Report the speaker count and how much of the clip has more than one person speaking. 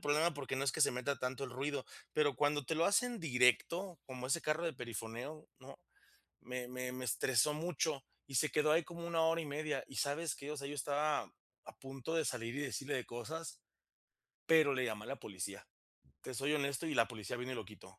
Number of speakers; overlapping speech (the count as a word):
one, no overlap